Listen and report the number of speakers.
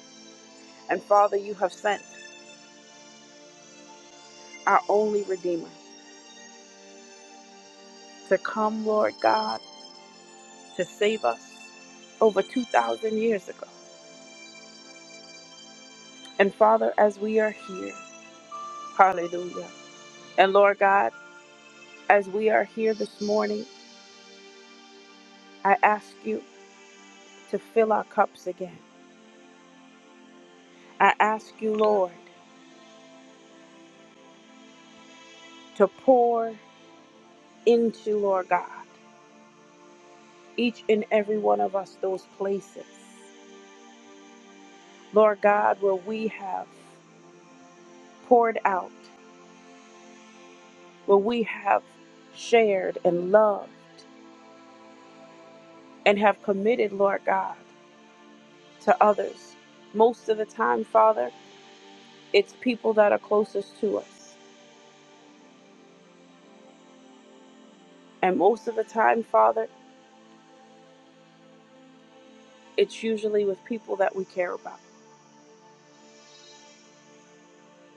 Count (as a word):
one